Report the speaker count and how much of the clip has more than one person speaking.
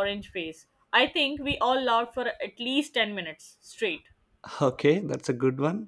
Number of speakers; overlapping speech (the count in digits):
2, no overlap